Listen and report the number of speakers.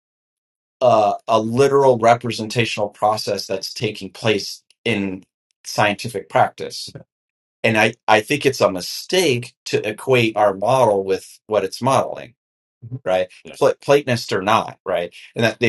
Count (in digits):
1